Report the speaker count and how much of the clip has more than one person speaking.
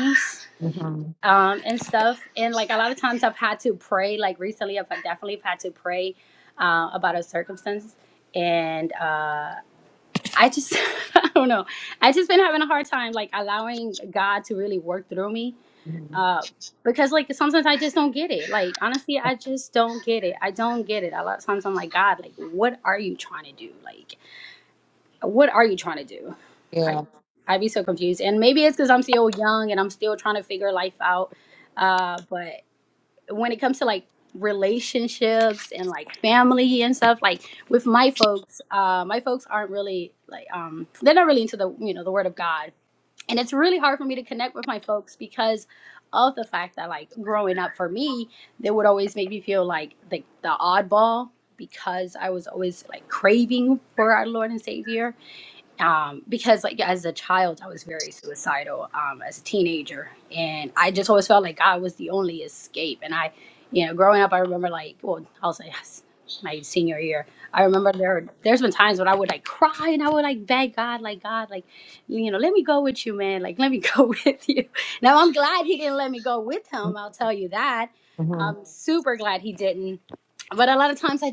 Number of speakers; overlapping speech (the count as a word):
two, under 1%